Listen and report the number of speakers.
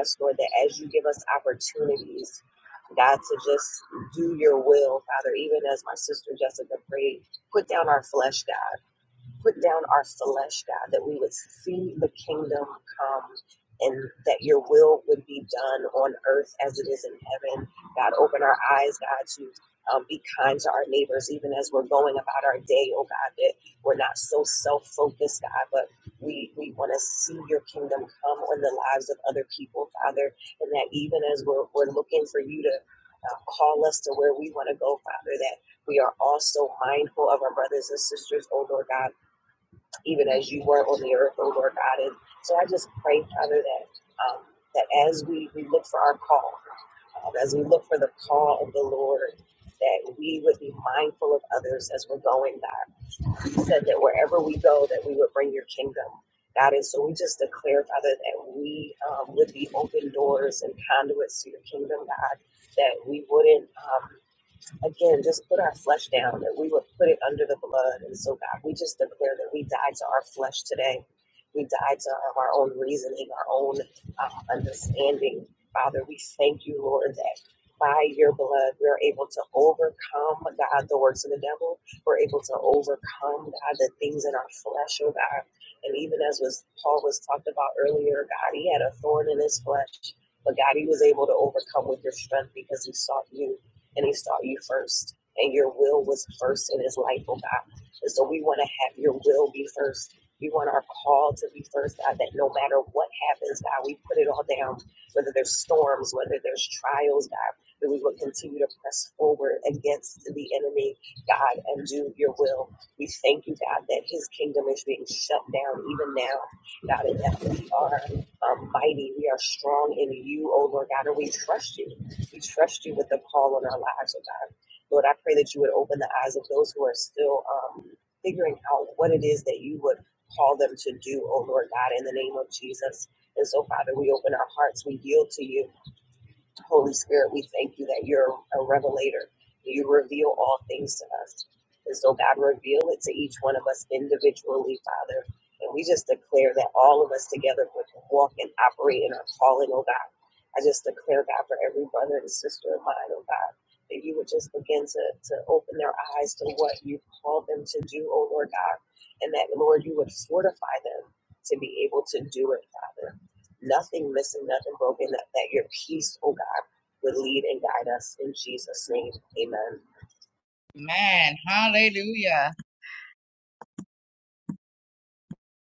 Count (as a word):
two